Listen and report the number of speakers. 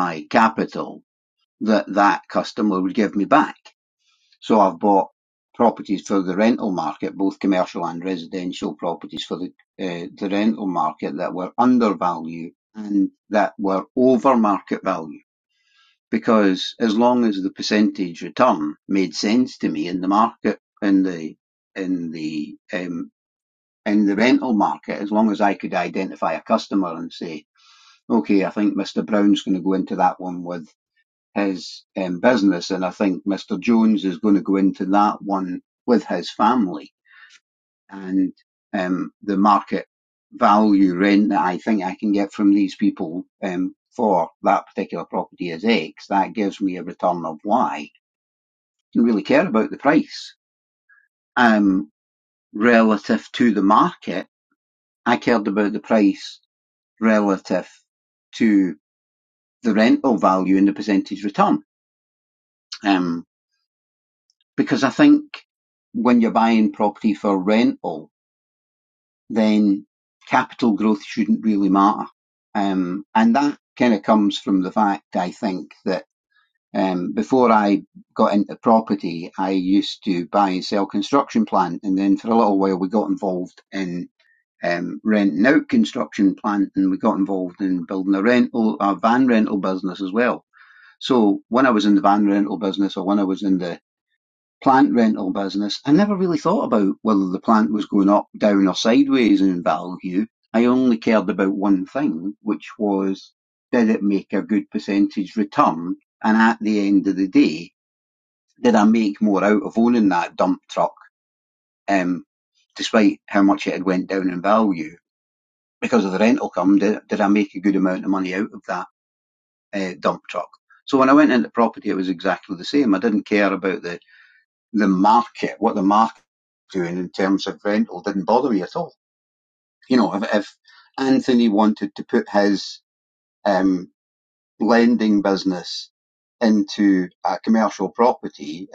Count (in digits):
1